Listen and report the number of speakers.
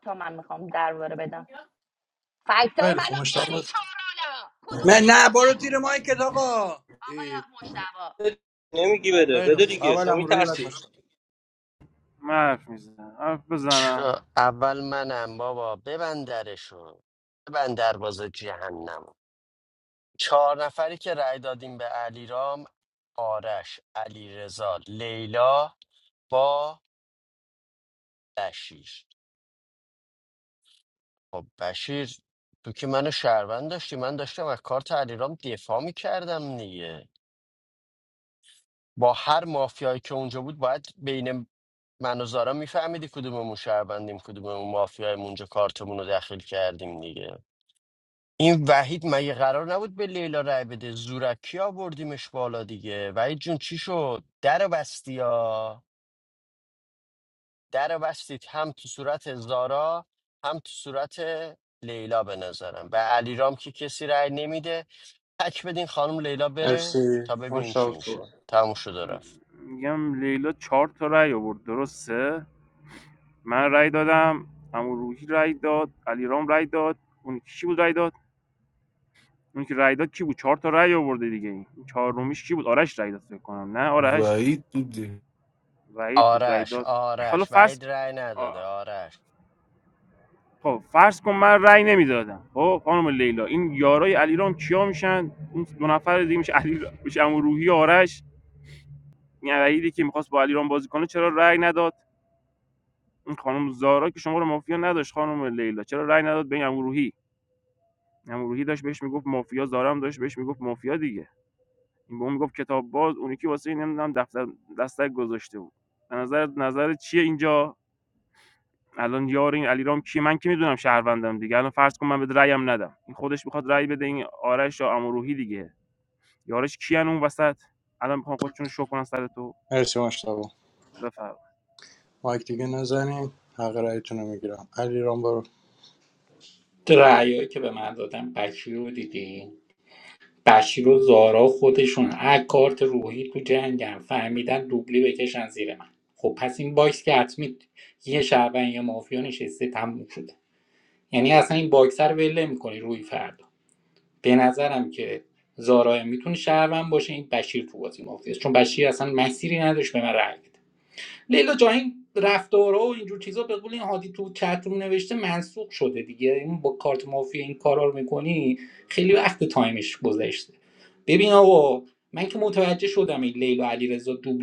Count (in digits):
7